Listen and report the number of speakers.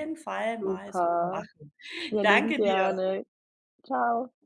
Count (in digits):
2